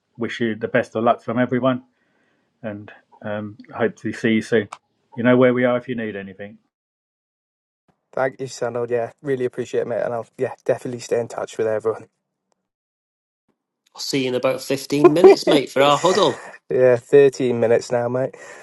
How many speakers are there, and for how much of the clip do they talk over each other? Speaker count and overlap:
3, no overlap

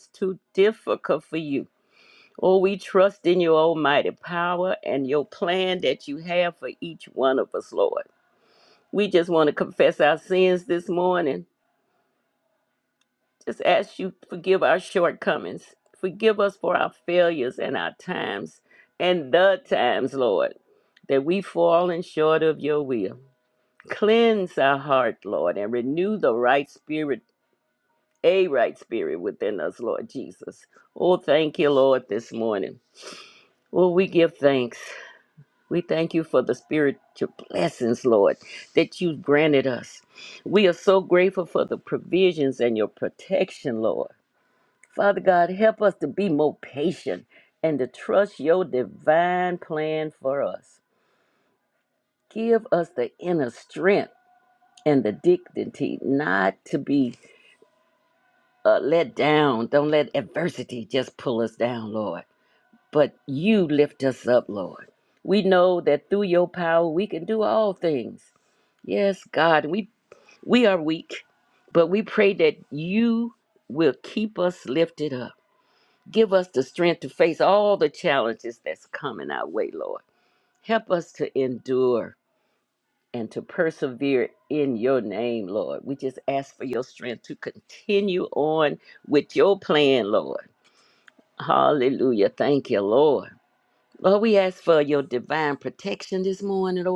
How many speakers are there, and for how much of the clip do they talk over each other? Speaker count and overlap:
1, no overlap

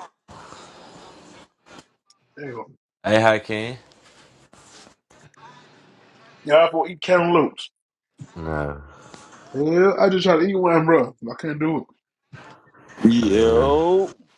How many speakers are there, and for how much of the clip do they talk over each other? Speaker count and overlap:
3, about 4%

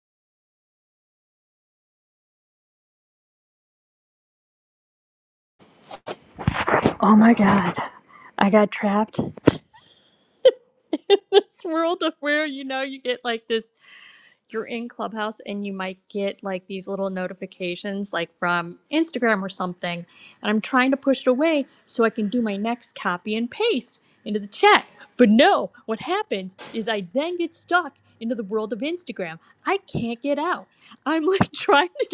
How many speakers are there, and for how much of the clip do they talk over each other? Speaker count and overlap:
1, no overlap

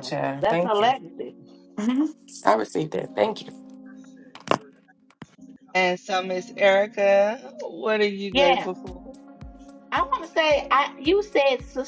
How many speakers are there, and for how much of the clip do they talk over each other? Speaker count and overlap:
3, about 10%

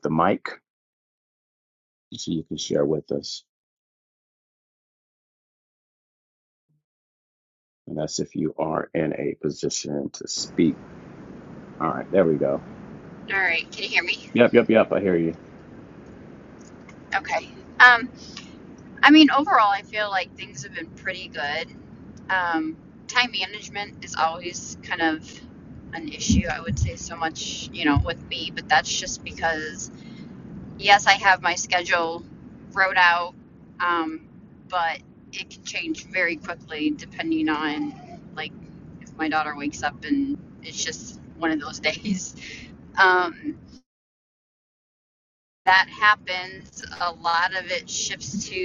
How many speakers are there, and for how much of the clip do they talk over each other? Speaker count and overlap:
2, no overlap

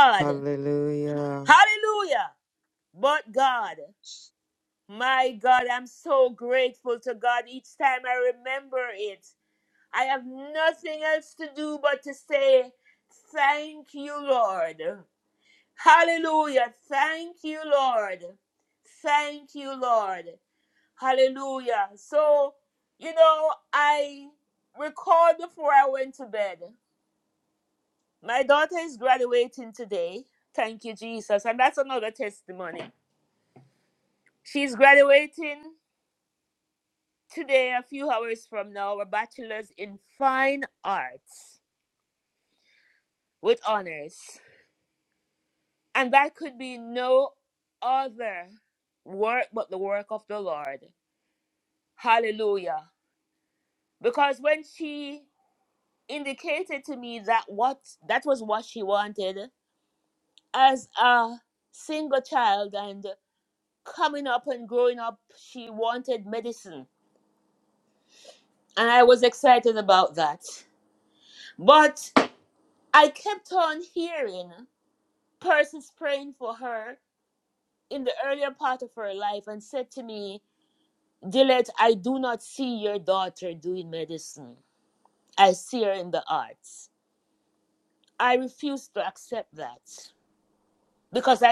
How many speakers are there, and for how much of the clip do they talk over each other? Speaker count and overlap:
2, under 1%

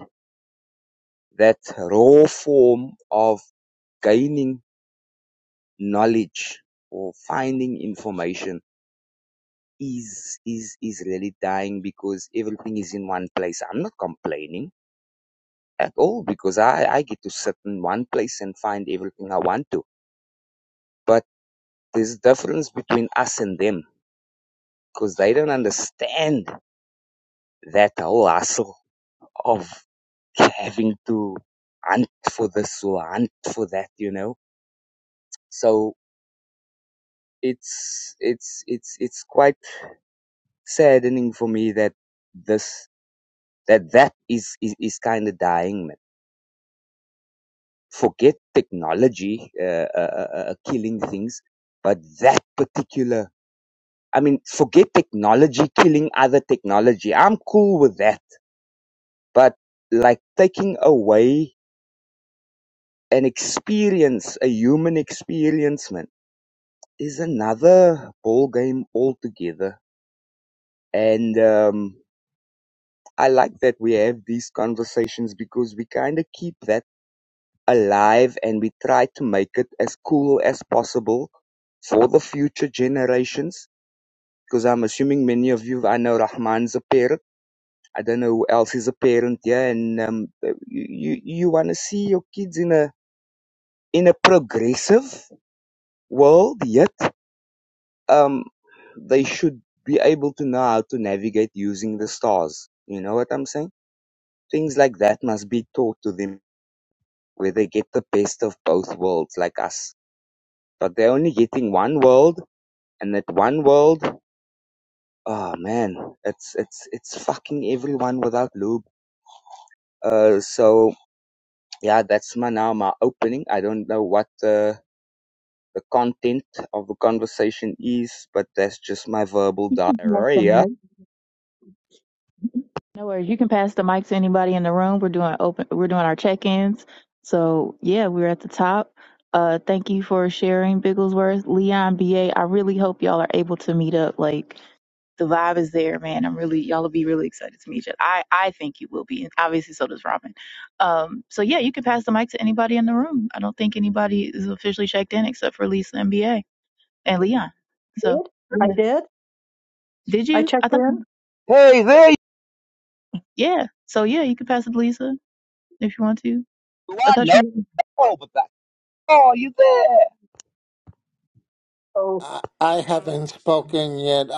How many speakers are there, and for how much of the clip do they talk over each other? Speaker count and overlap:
4, about 1%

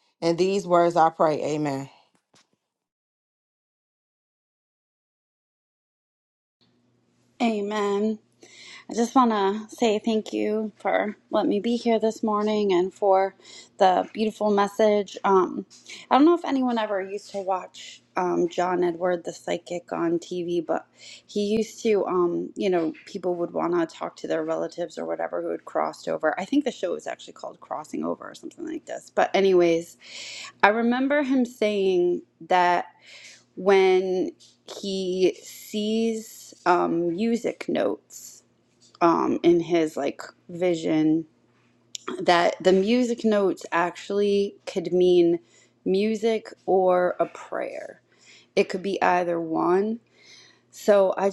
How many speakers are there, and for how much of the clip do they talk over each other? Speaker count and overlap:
2, no overlap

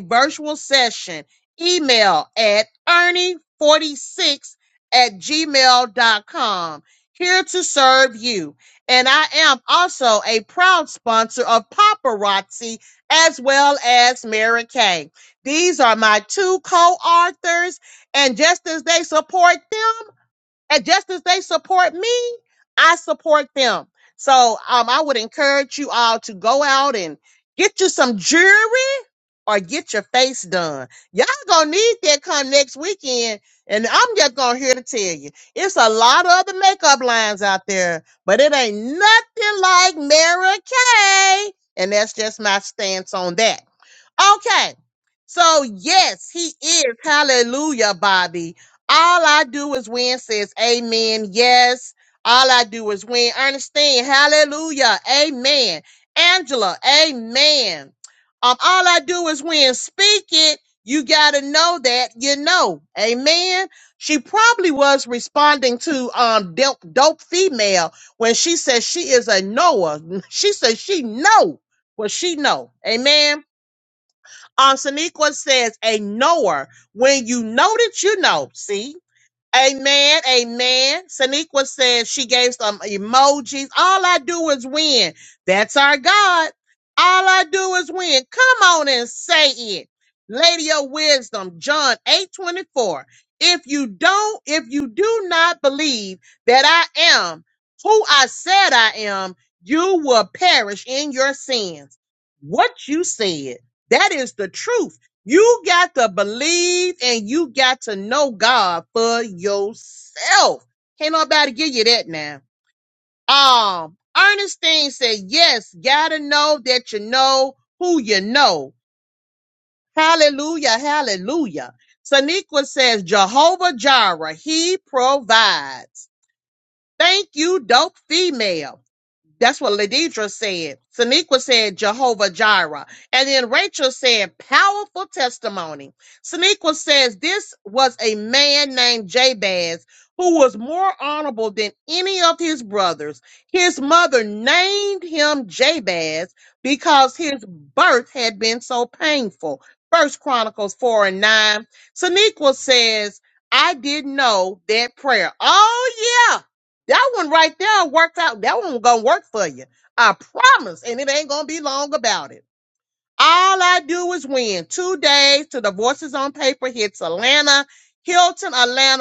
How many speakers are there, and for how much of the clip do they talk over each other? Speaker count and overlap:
1, no overlap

